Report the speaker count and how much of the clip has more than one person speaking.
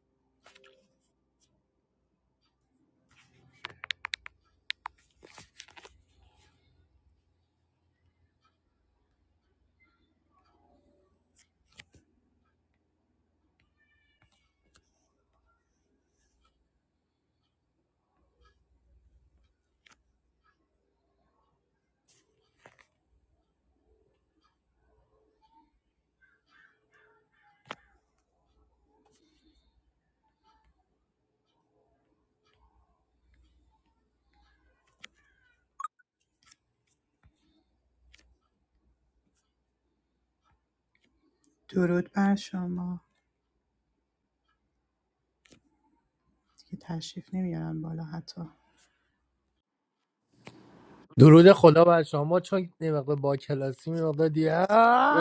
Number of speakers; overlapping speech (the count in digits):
2, under 1%